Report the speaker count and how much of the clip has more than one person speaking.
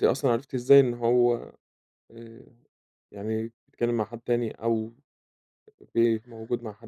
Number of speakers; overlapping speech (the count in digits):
1, no overlap